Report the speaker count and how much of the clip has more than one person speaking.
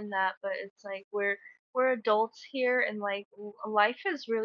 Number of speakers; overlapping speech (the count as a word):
one, no overlap